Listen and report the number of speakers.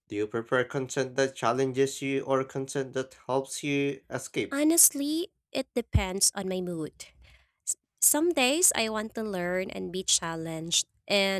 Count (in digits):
2